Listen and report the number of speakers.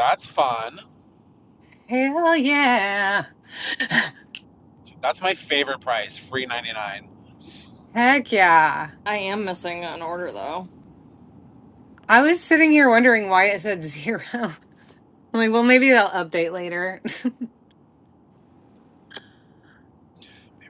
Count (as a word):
three